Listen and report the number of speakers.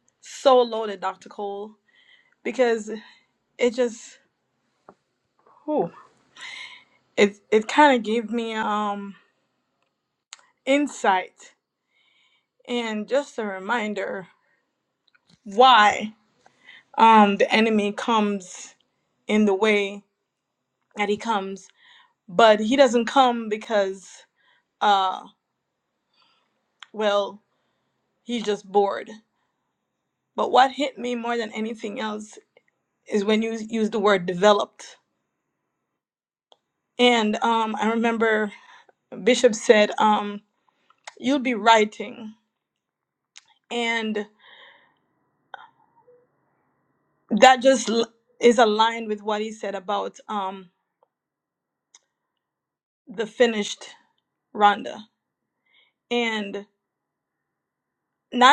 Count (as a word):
one